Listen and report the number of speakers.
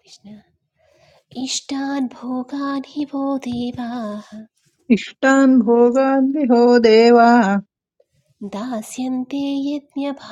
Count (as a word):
two